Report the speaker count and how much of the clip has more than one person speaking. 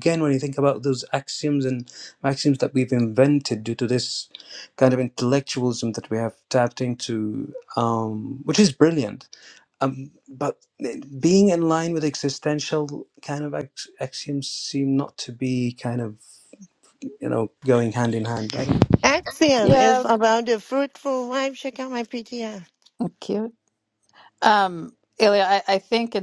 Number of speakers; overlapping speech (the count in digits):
3, about 2%